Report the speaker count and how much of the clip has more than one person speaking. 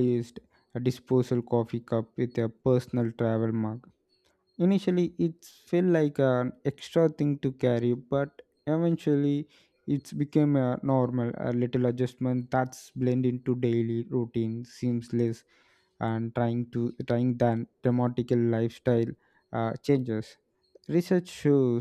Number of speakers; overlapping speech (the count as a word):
one, no overlap